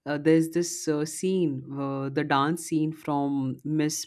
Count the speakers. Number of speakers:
one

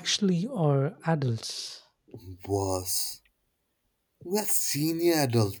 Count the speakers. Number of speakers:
two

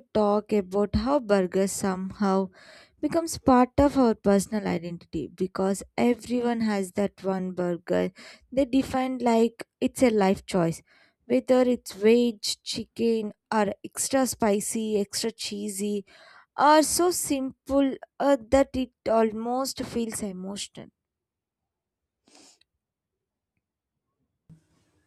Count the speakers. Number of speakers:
one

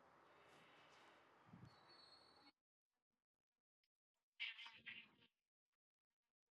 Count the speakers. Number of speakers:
zero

